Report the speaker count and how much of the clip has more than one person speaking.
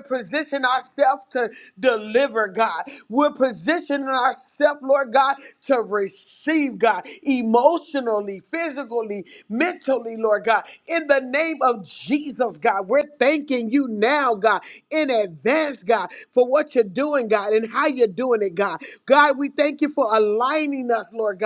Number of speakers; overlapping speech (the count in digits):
1, no overlap